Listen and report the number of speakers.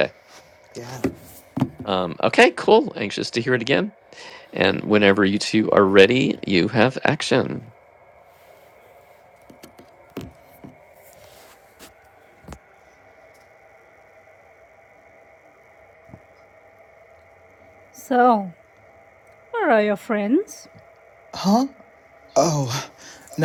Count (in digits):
3